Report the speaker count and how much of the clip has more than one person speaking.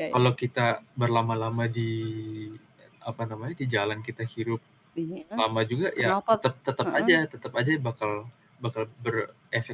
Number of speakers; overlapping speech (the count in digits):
2, about 9%